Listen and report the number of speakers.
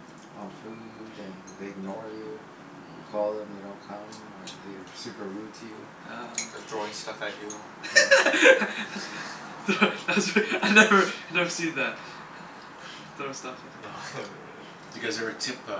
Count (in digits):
4